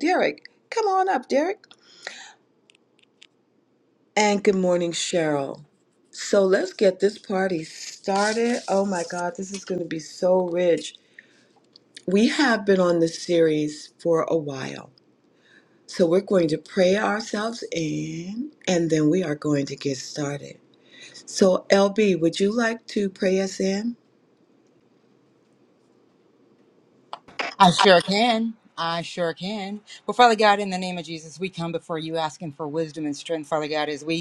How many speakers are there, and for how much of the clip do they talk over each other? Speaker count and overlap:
two, no overlap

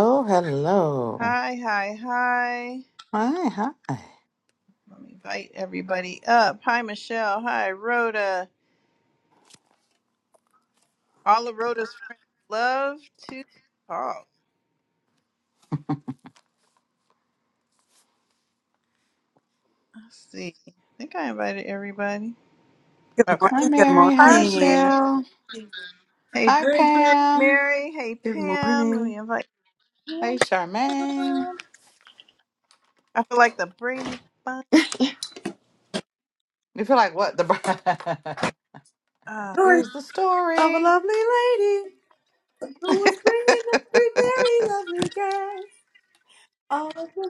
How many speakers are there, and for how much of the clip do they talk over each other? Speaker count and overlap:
three, about 9%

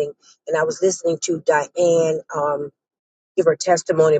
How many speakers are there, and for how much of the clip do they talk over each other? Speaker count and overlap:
one, no overlap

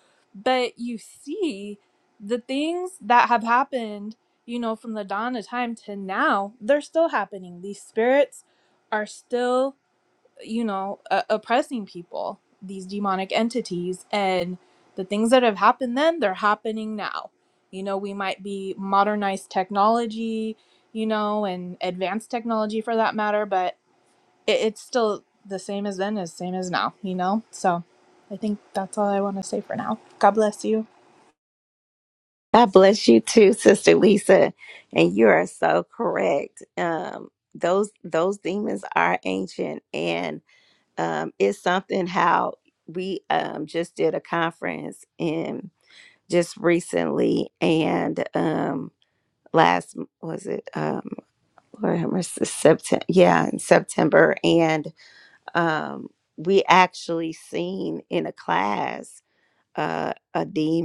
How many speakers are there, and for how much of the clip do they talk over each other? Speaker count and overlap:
two, no overlap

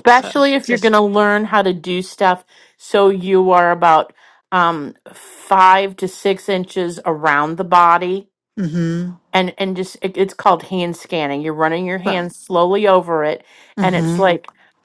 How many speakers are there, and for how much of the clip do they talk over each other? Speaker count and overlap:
two, about 7%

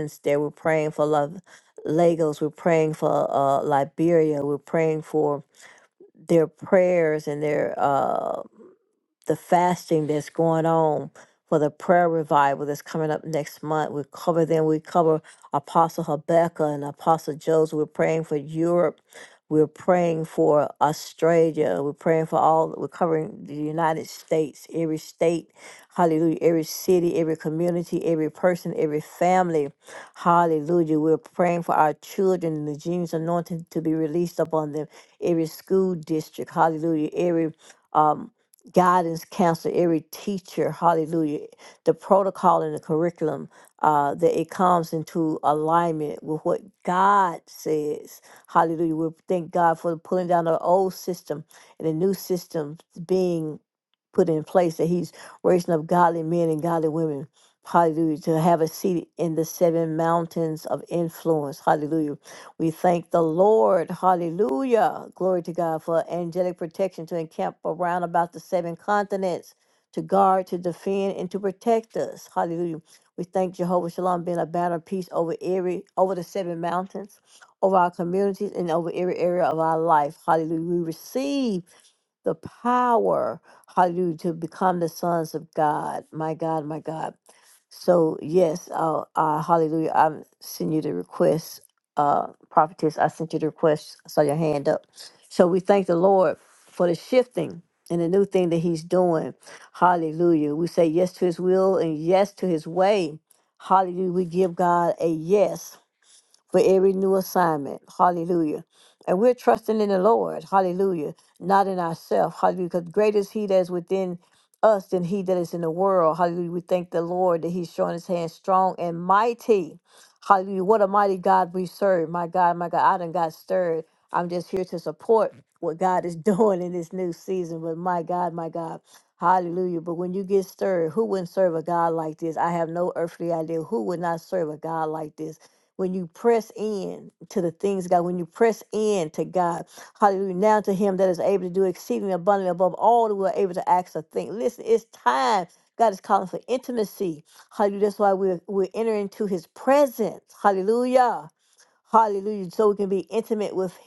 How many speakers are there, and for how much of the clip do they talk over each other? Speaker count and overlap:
one, no overlap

